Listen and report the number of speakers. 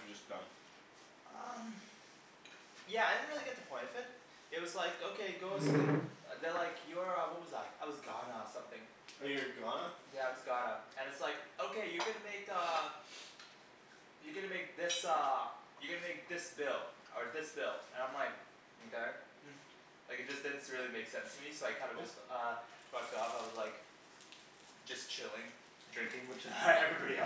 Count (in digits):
2